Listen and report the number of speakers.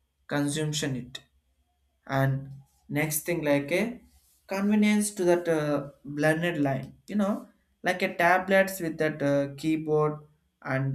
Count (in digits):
1